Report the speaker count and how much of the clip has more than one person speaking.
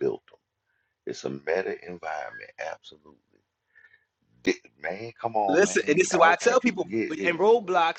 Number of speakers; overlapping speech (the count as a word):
two, about 24%